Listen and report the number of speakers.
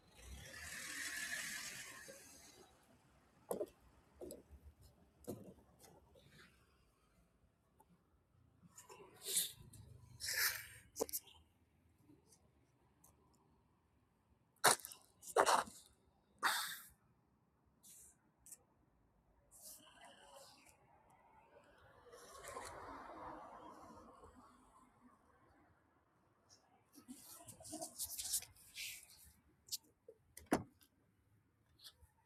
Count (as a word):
zero